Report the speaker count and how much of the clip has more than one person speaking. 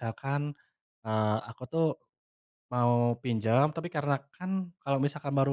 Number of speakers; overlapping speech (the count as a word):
one, no overlap